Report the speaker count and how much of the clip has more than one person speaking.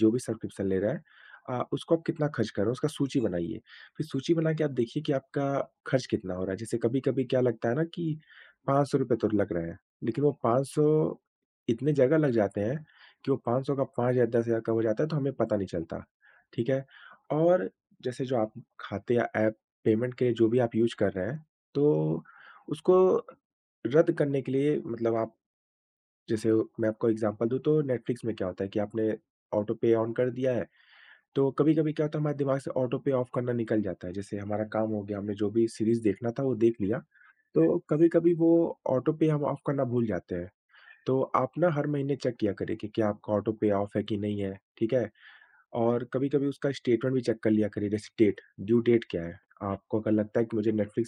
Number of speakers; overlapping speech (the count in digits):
1, no overlap